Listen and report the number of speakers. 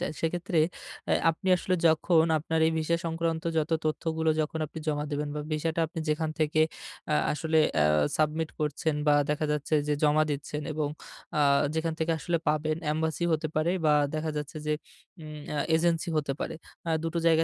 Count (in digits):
1